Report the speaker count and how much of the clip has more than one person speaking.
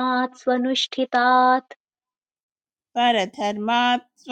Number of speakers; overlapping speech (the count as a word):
two, no overlap